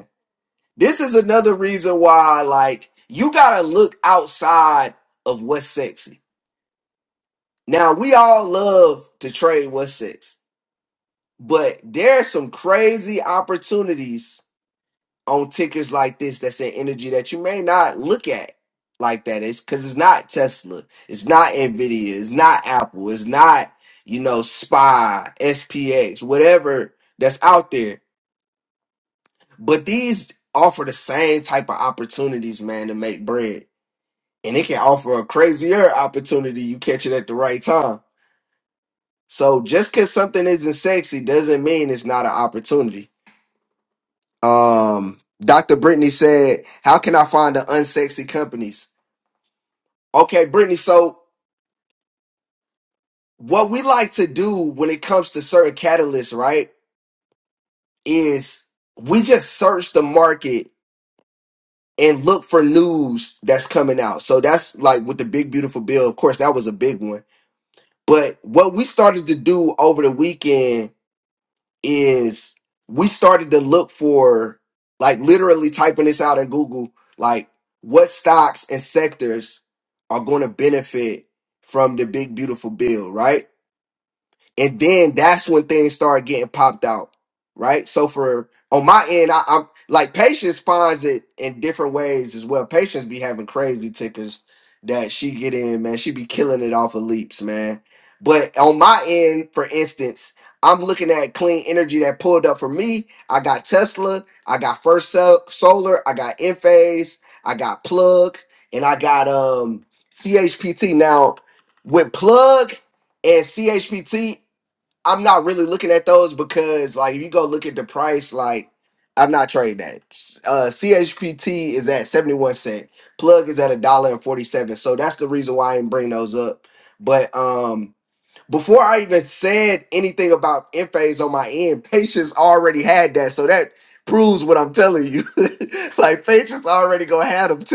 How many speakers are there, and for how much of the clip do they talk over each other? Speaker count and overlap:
one, no overlap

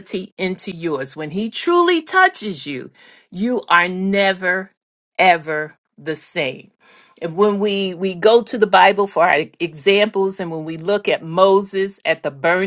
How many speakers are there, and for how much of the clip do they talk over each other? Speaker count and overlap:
one, no overlap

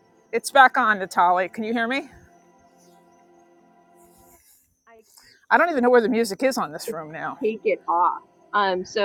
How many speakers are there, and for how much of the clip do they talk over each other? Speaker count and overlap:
two, no overlap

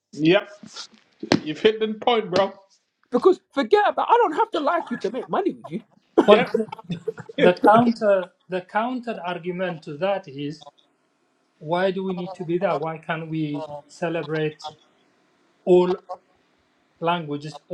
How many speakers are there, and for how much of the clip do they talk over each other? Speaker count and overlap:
three, about 1%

